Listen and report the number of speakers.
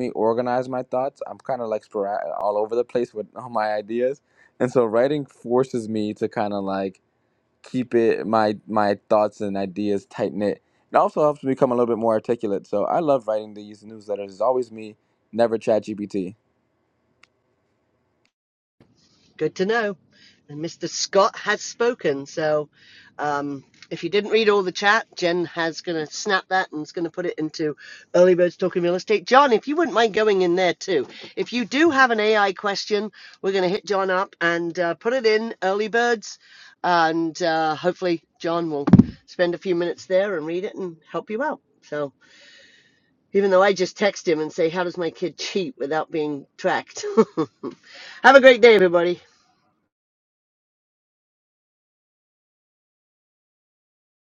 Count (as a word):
two